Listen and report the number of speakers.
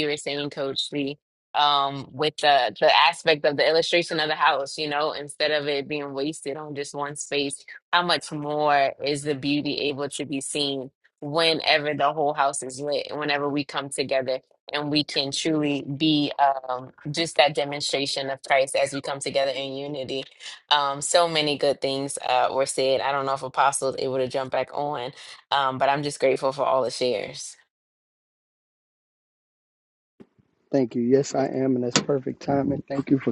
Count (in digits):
2